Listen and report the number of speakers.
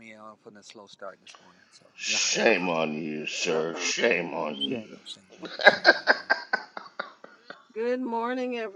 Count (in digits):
3